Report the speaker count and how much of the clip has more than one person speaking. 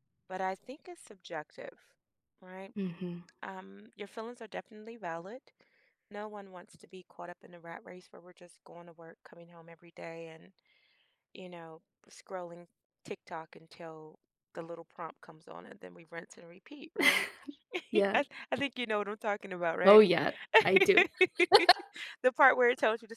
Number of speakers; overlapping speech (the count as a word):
two, about 1%